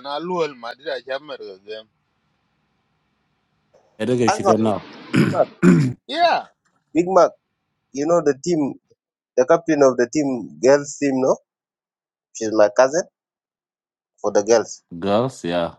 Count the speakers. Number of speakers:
three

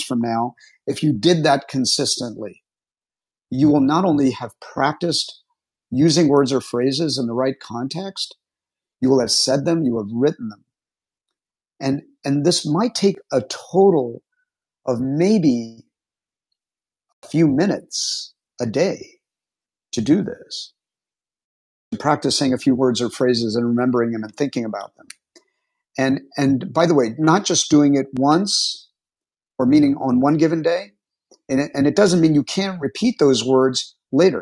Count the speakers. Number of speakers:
one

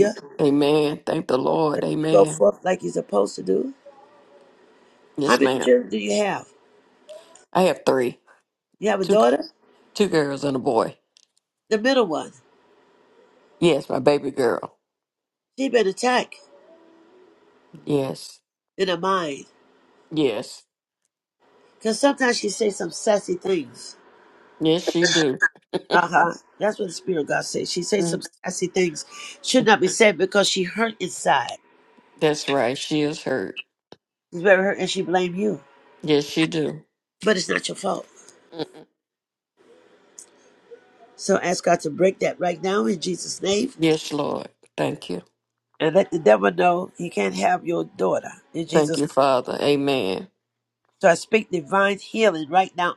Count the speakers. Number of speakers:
two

